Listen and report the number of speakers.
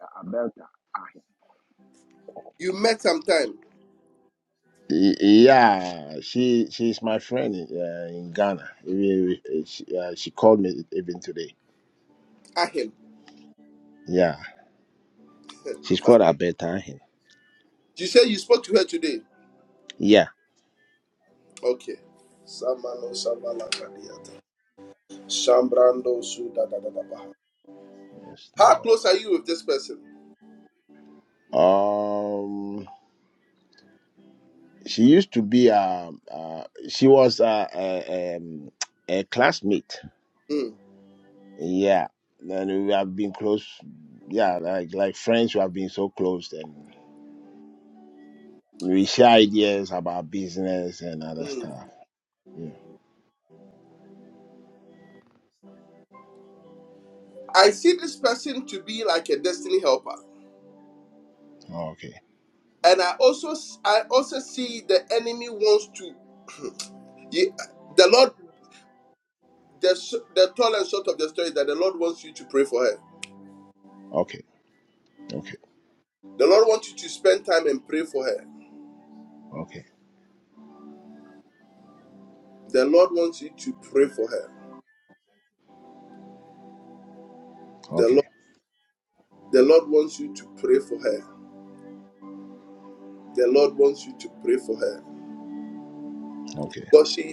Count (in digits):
2